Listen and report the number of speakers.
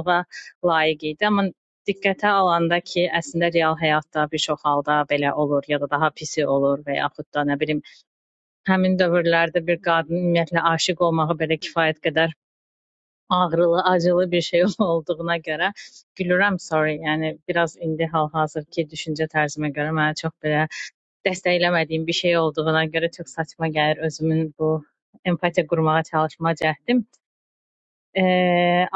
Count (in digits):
1